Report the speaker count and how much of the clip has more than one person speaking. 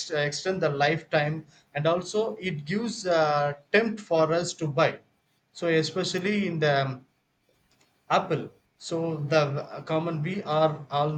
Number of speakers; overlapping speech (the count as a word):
one, no overlap